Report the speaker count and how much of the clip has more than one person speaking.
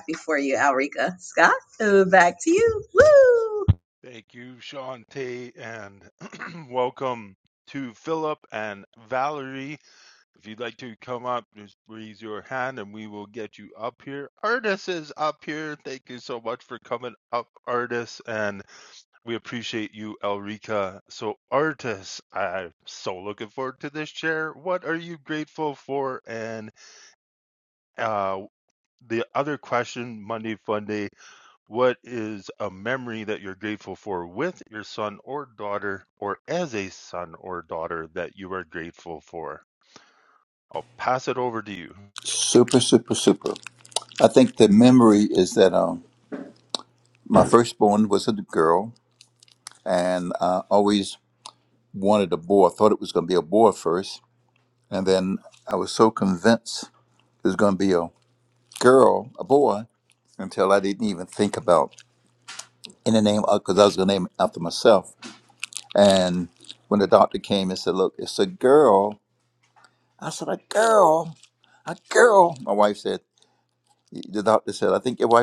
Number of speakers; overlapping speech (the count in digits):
3, no overlap